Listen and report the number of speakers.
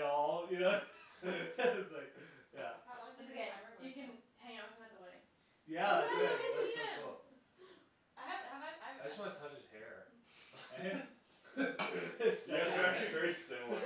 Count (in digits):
4